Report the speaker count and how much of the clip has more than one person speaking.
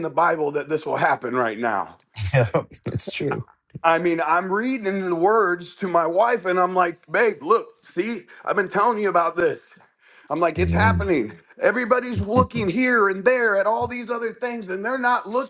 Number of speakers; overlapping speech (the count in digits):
2, about 3%